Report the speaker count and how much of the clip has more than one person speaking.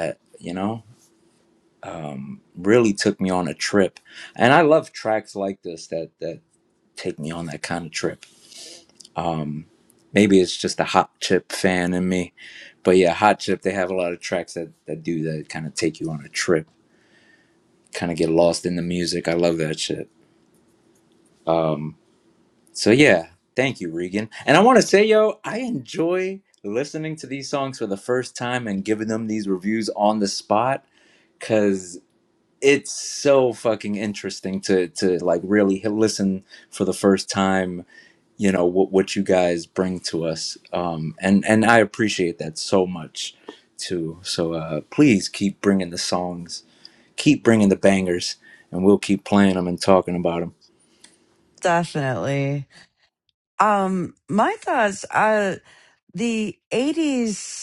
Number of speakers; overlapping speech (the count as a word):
two, no overlap